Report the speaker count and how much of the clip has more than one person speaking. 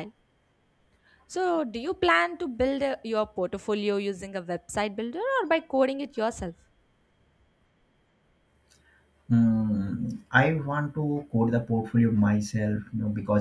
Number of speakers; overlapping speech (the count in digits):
2, no overlap